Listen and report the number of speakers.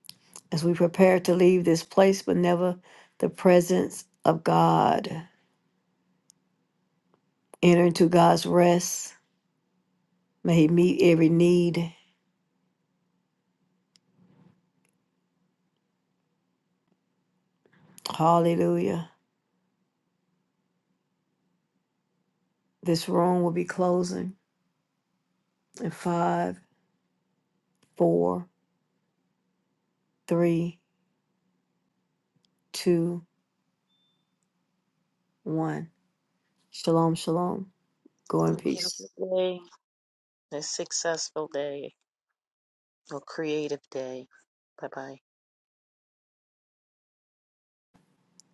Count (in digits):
2